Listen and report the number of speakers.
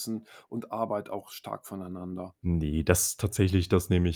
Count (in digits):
2